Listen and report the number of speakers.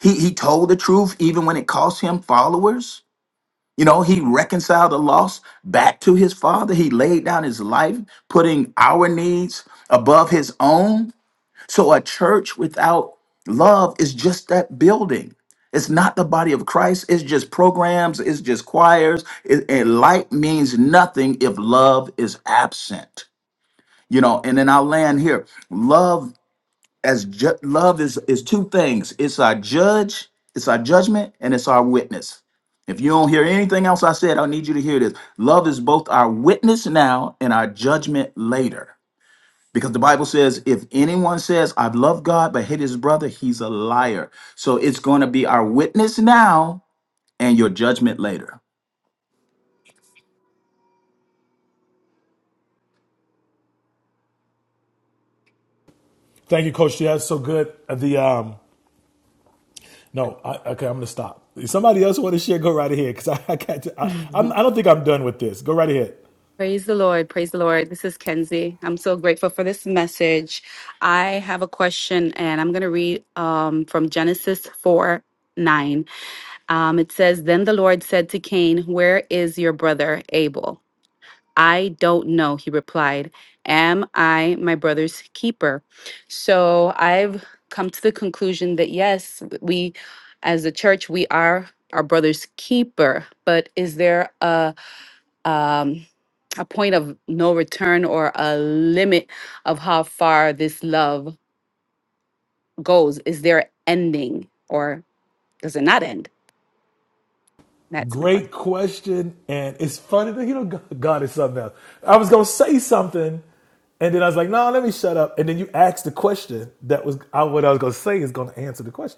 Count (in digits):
3